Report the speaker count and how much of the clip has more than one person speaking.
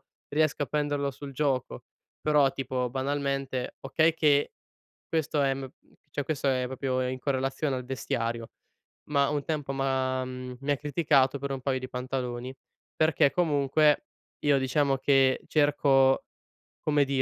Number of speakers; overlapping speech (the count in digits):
1, no overlap